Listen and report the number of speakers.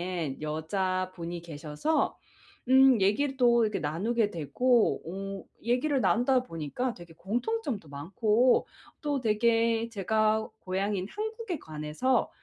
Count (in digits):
1